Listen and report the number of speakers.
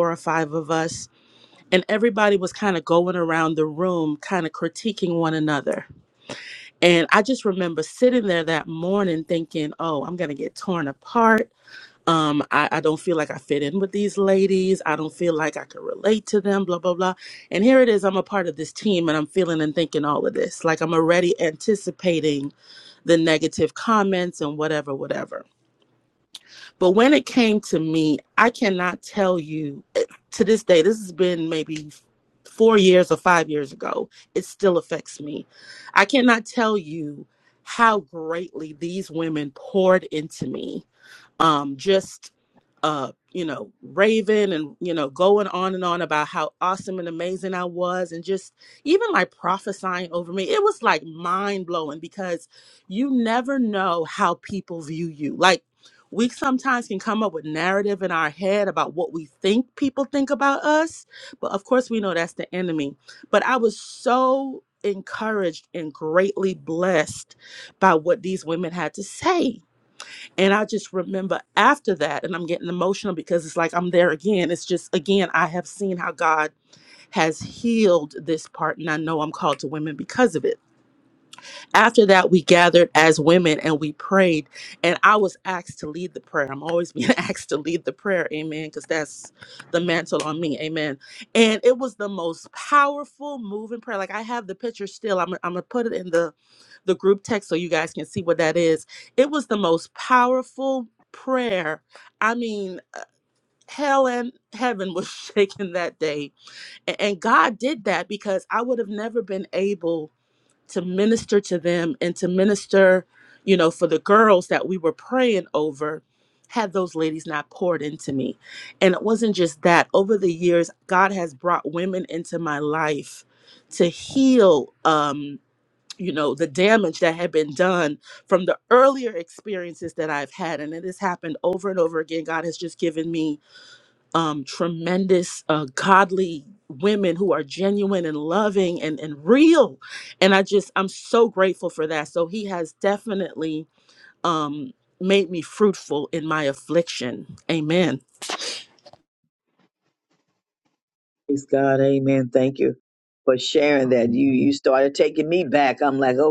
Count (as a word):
two